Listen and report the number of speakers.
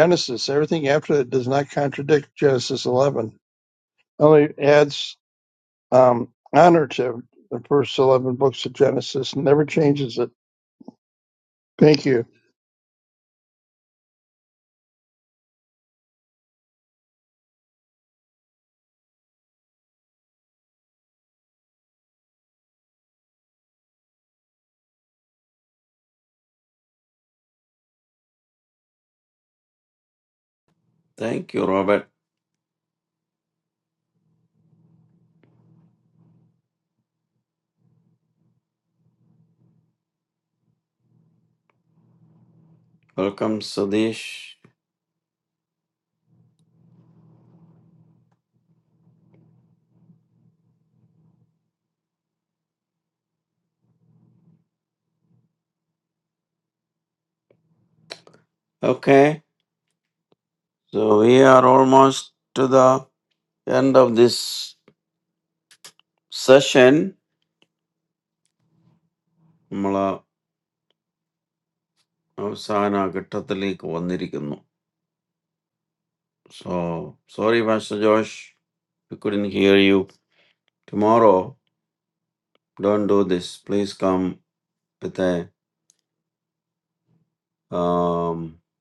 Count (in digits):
2